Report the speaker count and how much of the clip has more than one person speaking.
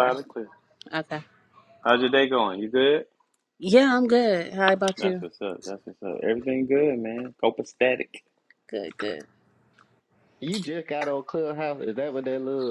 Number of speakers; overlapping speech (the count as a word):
three, about 3%